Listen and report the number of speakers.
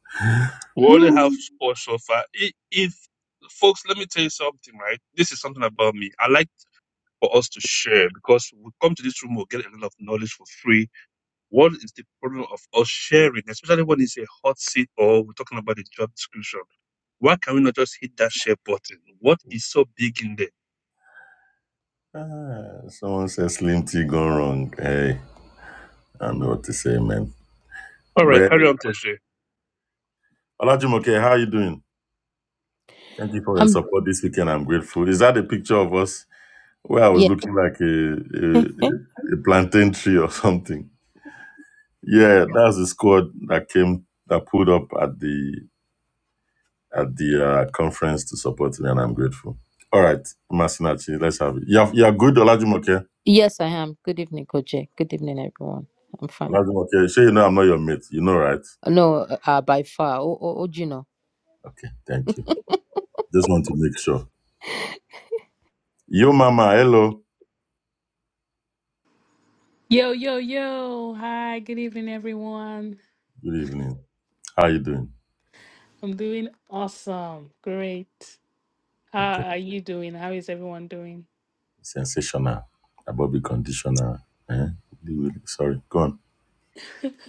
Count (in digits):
4